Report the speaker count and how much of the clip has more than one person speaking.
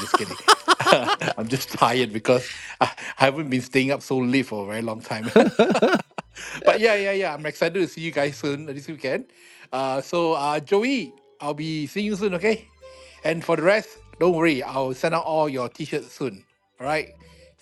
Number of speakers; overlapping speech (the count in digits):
1, no overlap